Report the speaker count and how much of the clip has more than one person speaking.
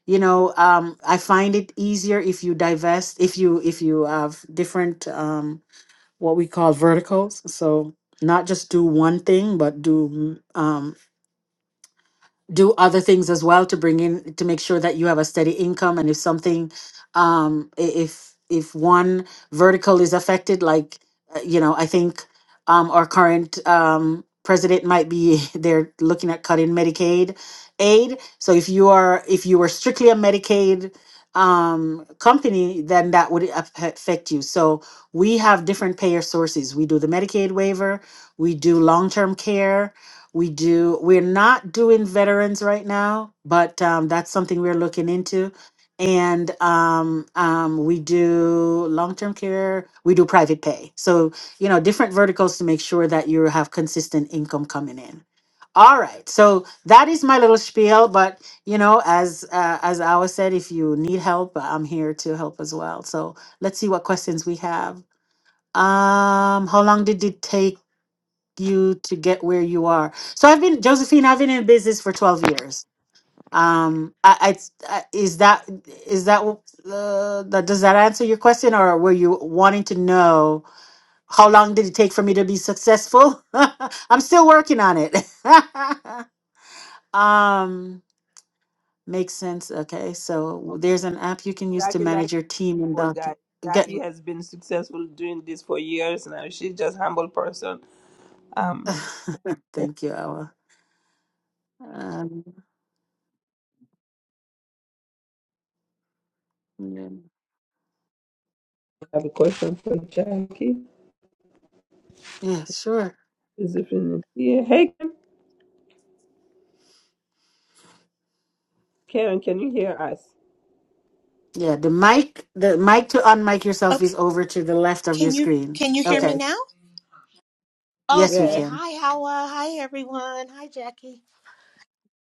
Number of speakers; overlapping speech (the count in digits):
3, about 3%